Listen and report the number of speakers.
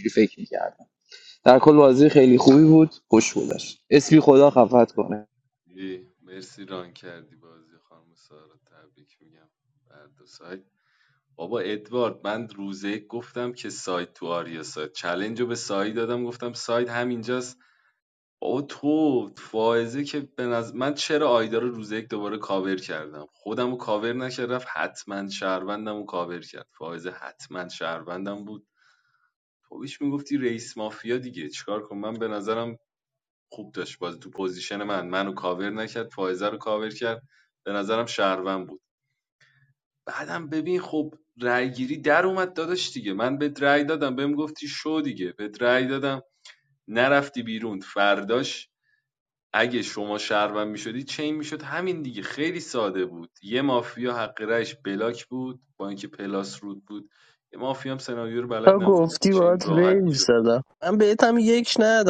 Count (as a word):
three